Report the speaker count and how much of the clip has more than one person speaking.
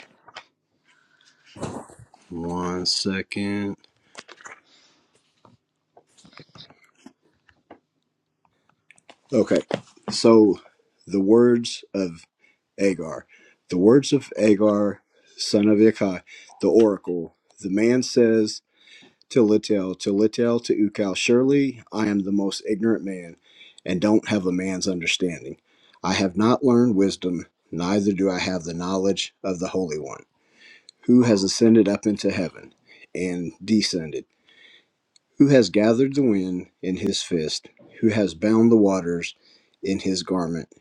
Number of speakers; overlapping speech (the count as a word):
one, no overlap